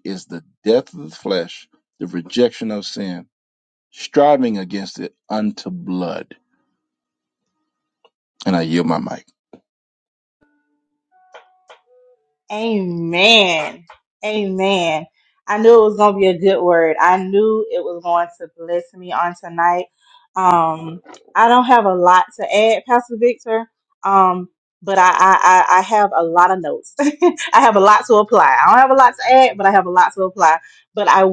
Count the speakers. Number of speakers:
2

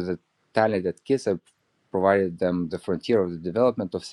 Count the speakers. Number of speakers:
1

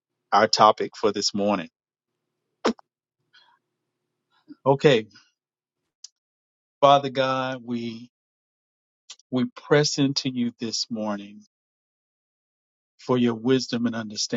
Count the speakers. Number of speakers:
1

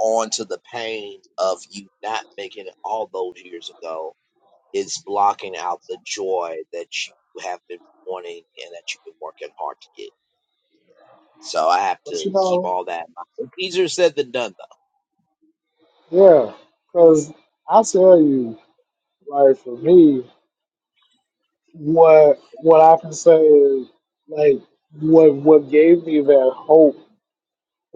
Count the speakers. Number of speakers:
2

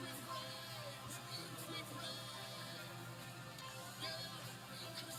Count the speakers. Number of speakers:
0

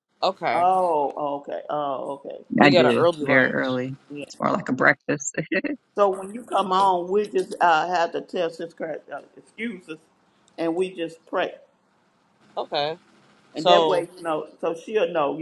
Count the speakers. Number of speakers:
3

